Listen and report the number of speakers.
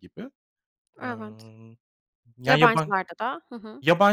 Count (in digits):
2